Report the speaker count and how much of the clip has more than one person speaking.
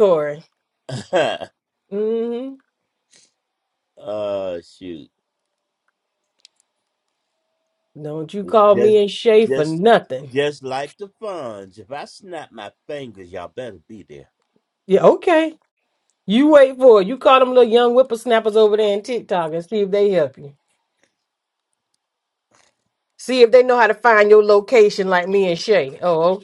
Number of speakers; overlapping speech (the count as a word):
two, about 2%